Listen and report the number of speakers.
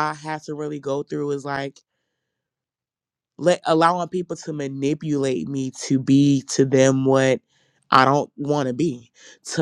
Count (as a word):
one